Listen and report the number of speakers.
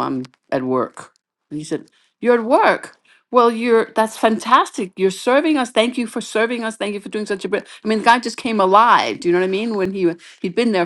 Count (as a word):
one